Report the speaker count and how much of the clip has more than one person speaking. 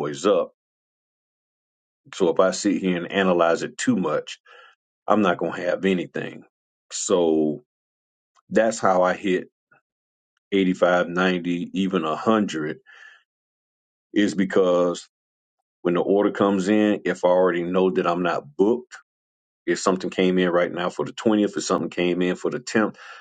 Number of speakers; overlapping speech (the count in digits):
1, no overlap